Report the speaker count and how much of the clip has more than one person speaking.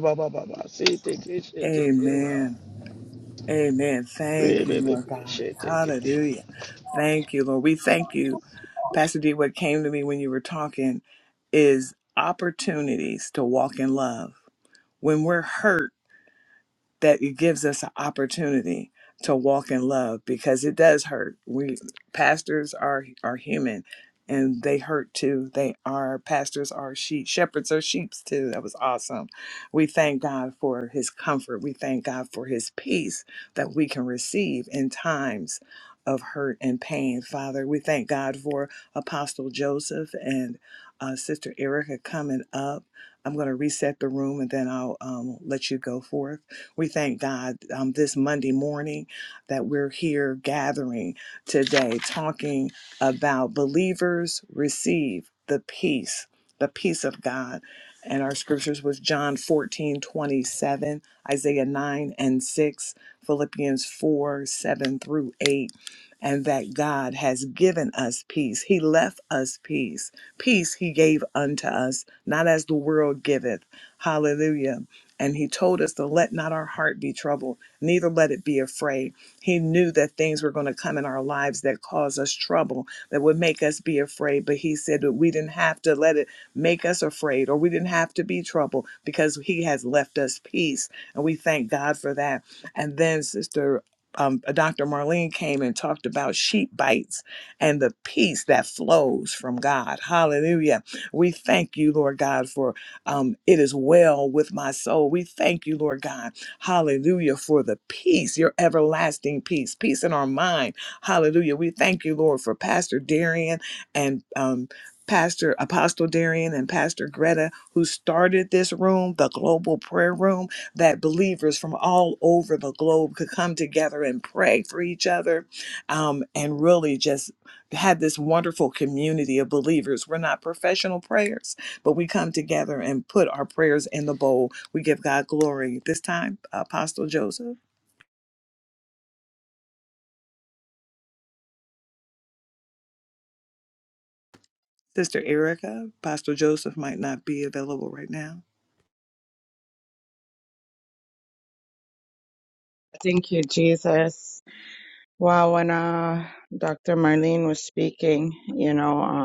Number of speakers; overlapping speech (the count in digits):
3, about 2%